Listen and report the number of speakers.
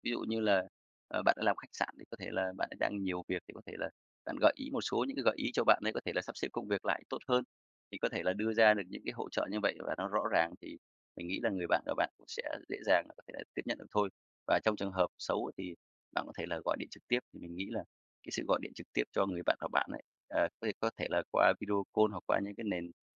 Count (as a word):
one